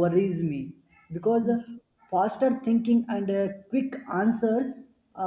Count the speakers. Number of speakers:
one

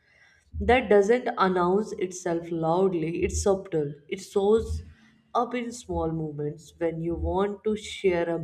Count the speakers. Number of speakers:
one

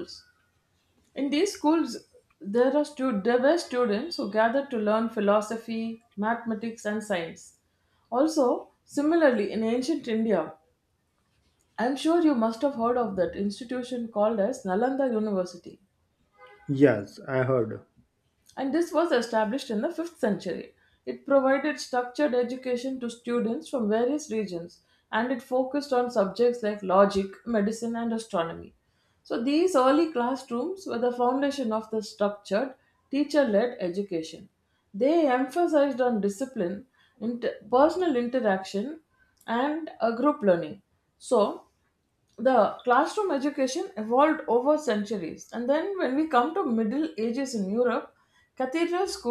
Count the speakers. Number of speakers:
two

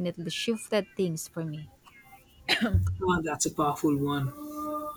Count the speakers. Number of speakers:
two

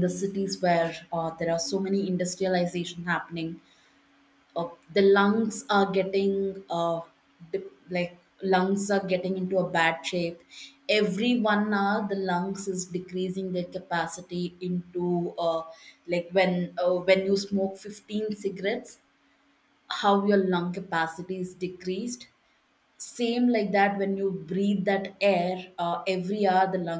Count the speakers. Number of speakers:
one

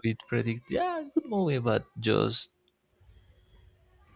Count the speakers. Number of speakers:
one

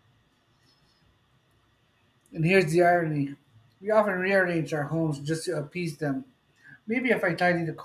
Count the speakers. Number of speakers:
one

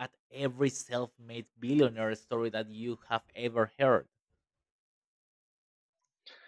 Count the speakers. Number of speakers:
one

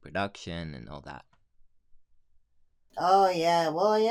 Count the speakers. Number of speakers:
two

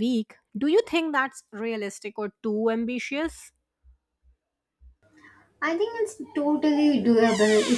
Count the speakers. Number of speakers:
two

